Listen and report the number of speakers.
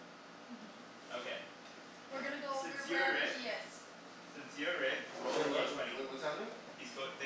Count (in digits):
3